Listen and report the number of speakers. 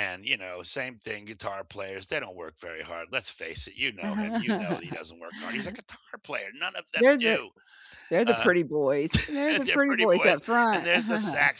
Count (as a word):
two